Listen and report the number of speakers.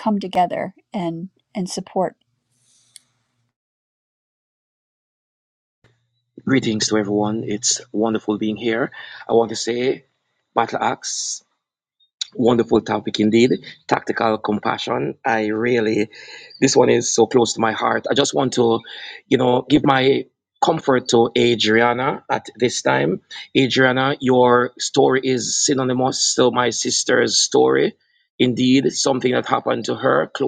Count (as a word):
two